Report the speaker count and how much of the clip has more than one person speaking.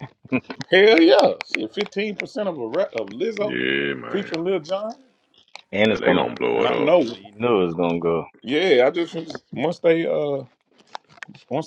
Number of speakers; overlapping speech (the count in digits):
3, about 15%